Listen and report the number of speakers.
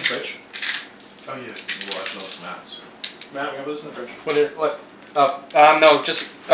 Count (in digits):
3